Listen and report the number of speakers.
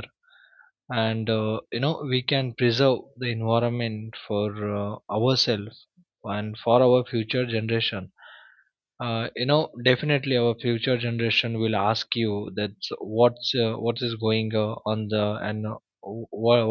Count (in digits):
1